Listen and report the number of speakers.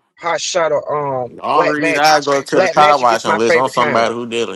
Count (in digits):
2